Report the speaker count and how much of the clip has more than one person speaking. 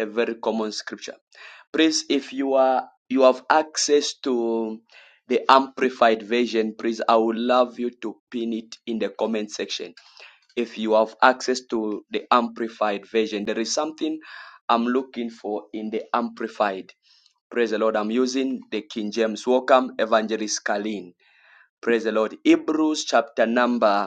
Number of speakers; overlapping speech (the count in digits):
1, no overlap